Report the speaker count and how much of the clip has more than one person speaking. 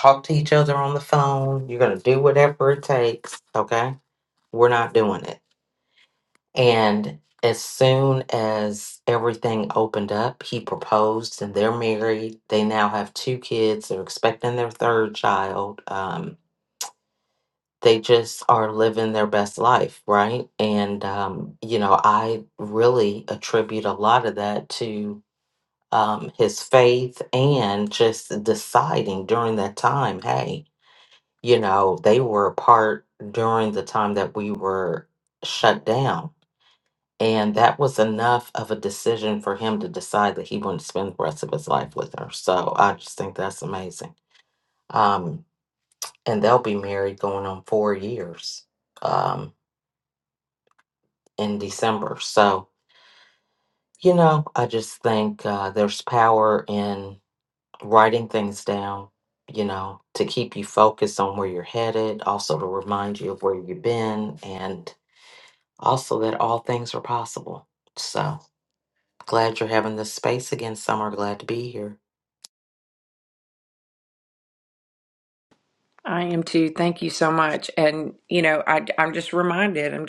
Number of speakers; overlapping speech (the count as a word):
two, no overlap